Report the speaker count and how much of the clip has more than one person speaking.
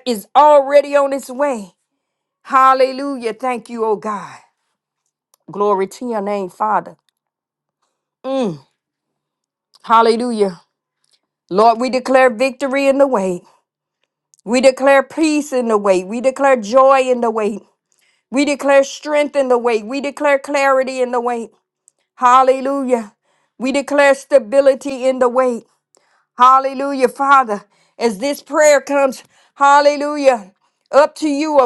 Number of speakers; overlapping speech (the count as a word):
one, no overlap